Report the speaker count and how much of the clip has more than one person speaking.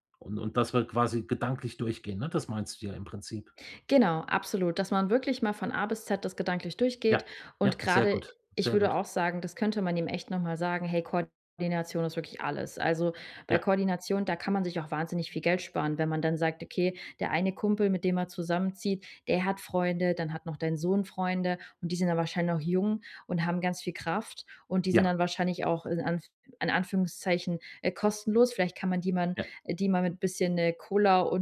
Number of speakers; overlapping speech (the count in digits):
2, about 5%